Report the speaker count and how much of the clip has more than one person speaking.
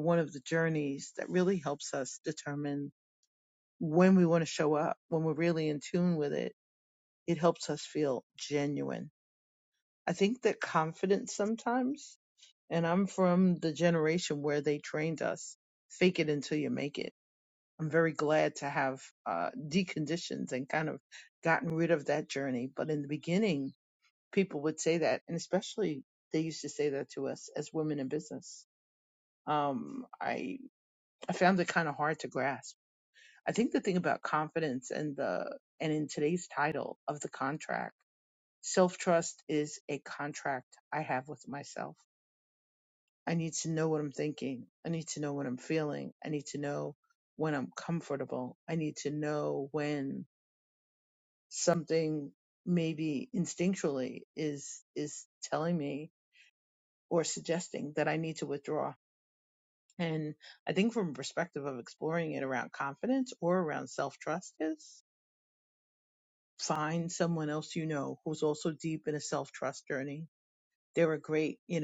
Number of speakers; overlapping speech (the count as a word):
one, no overlap